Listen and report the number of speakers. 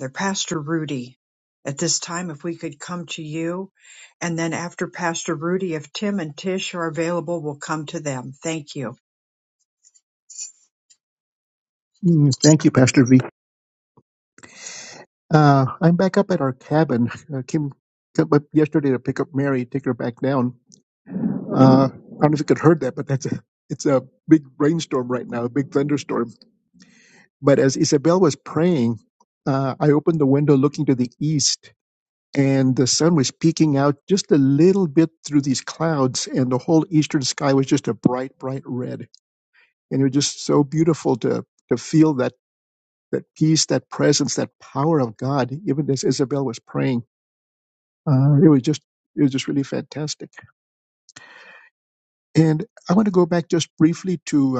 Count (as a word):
two